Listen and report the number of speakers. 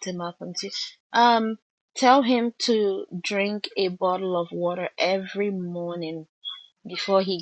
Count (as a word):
one